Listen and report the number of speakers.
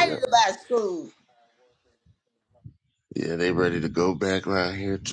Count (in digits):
2